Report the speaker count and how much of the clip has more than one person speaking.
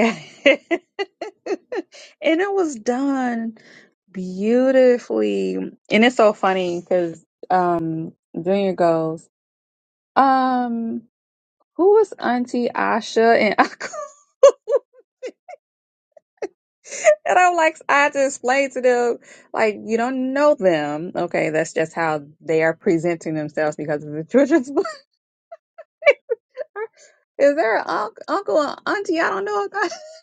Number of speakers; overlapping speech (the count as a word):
one, no overlap